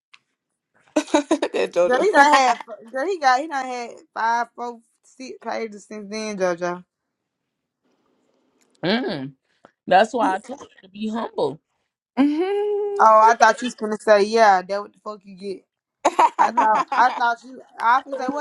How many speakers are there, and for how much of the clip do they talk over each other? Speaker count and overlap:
three, about 2%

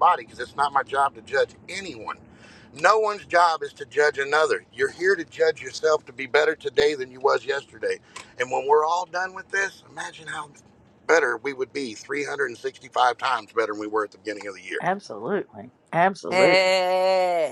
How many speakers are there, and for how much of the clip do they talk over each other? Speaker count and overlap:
three, about 2%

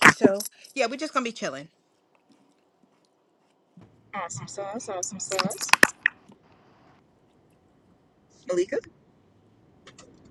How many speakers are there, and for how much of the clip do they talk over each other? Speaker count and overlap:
two, no overlap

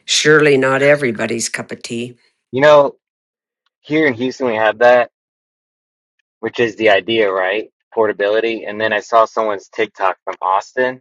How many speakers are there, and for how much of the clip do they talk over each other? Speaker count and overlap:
two, no overlap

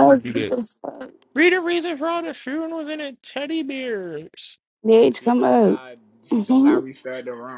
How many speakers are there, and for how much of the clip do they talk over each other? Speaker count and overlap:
three, about 21%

